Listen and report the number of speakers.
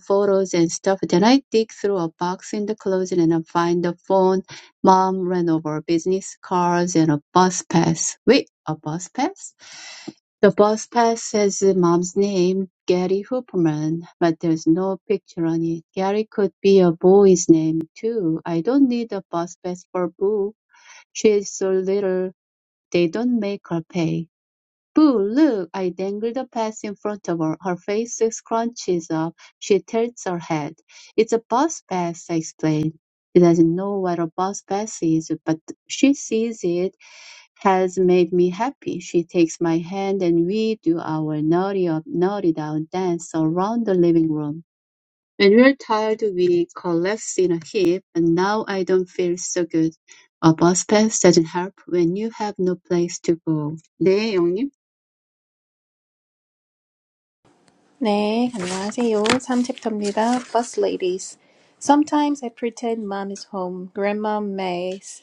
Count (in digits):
2